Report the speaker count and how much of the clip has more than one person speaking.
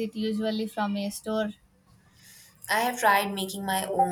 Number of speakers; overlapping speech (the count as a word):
two, no overlap